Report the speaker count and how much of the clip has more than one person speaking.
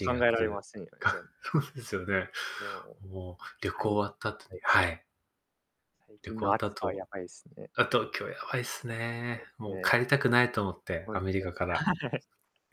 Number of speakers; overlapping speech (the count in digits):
2, about 21%